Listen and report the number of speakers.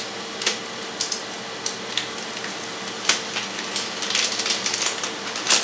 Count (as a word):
zero